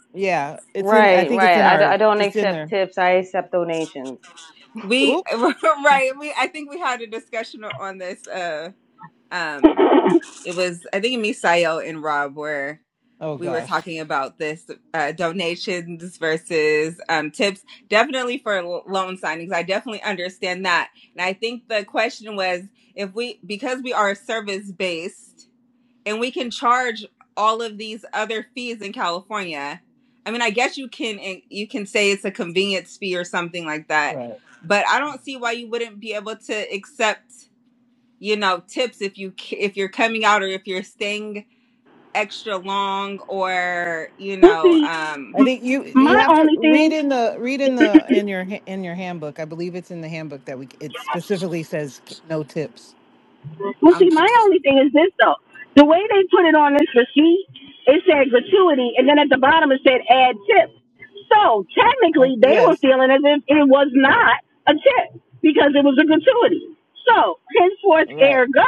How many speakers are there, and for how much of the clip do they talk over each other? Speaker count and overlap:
four, about 8%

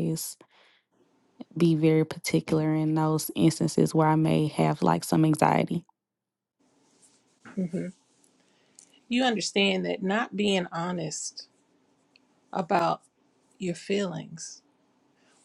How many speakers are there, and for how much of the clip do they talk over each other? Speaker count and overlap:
two, no overlap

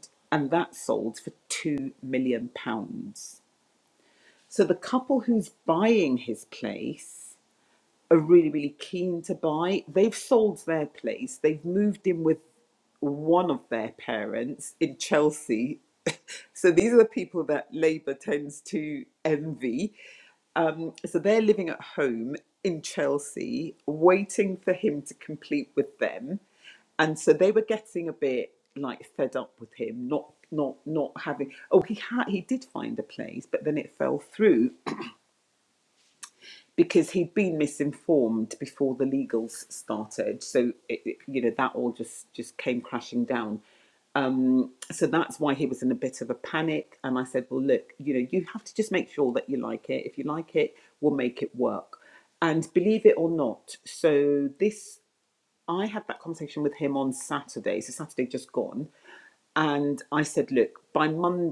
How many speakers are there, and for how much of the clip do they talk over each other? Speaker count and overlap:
one, no overlap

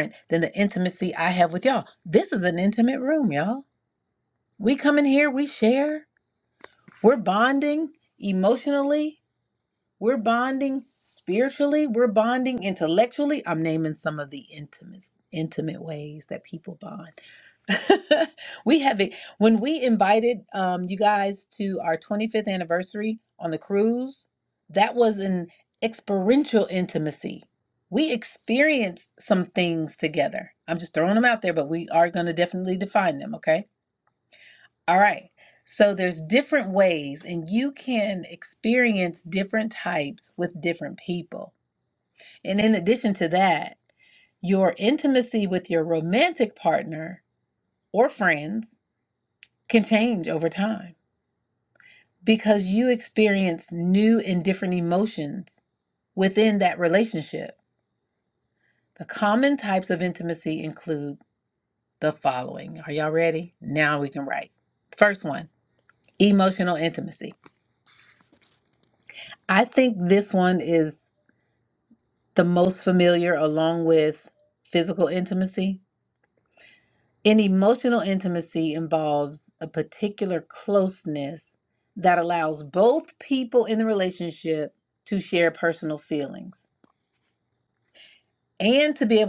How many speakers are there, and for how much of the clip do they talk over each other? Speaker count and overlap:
one, no overlap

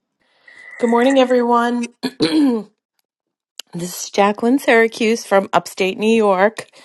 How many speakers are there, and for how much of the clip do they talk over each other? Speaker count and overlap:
one, no overlap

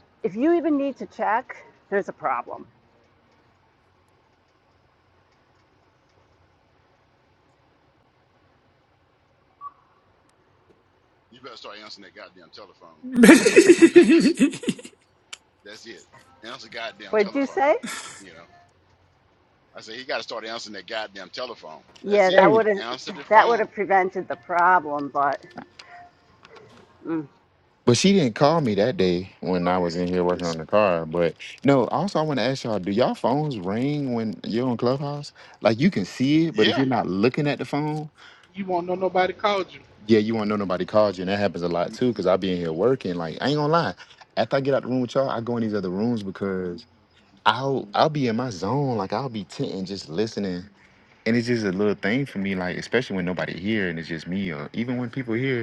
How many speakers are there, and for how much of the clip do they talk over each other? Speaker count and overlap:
five, about 4%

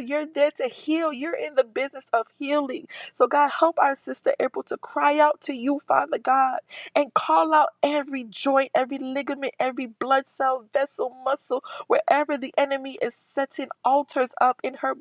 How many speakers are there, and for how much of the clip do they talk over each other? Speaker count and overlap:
one, no overlap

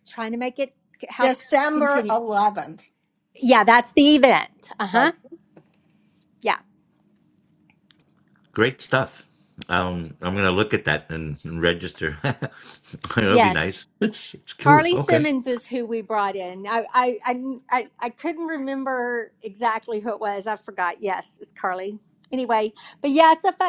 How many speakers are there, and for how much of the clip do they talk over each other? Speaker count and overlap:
three, about 7%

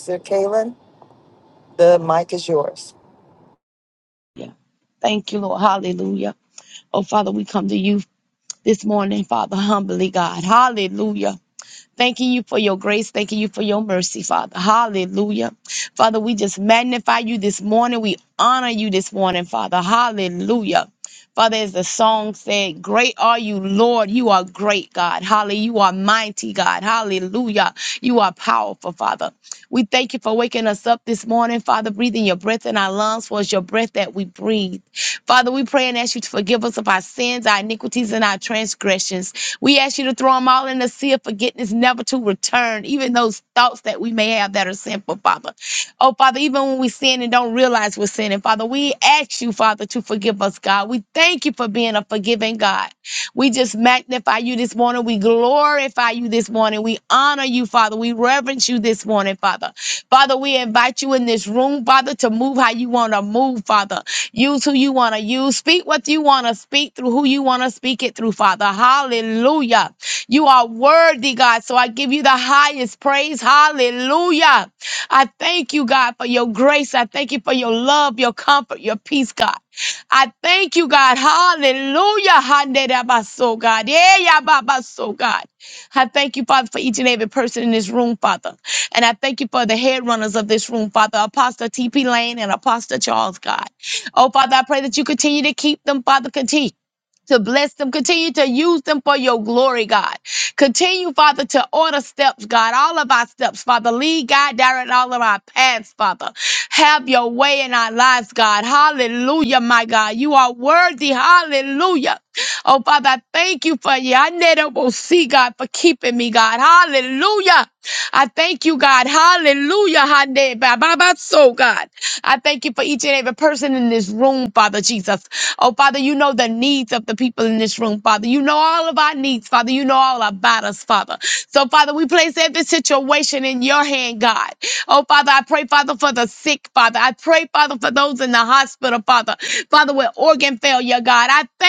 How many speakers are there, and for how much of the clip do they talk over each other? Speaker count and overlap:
two, no overlap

